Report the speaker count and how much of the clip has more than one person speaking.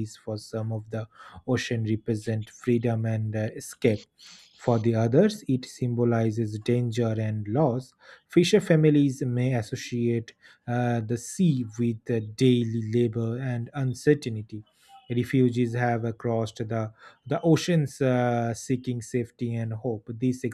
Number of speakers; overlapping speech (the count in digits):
1, no overlap